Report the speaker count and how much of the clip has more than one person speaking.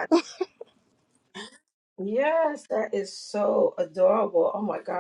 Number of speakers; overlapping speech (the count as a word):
one, no overlap